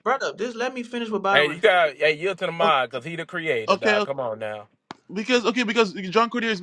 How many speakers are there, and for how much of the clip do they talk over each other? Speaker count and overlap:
3, about 17%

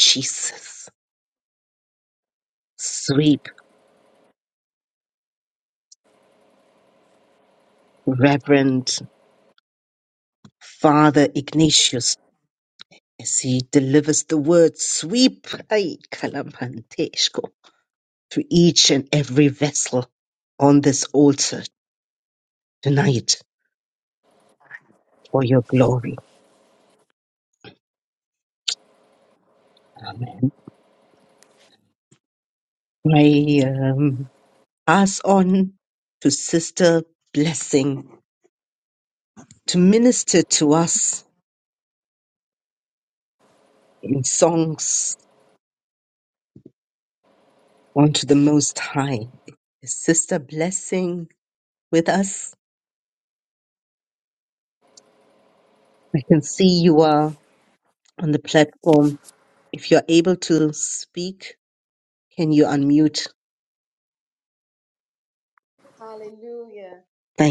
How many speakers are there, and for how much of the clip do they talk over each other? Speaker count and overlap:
2, no overlap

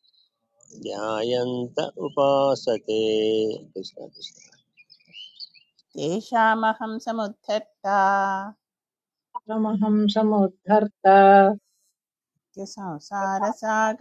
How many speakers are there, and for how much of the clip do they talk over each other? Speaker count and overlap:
3, no overlap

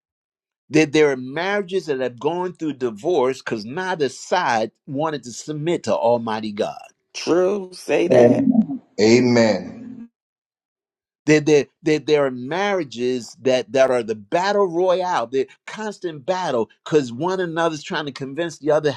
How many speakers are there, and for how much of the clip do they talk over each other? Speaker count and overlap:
3, about 2%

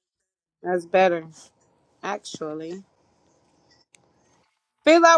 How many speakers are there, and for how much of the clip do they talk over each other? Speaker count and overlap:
1, no overlap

